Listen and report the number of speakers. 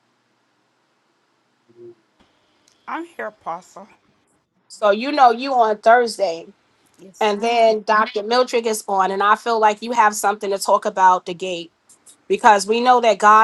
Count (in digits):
2